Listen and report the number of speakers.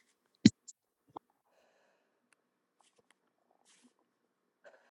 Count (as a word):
zero